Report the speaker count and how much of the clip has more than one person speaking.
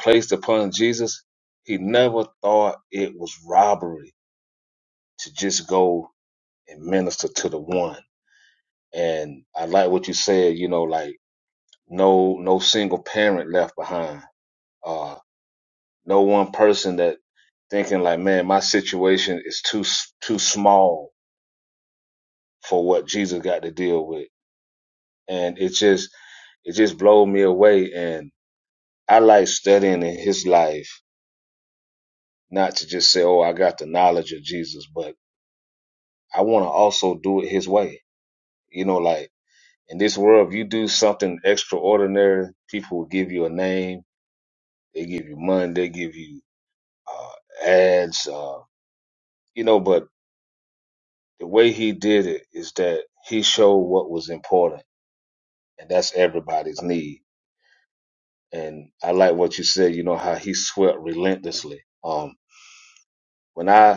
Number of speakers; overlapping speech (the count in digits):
1, no overlap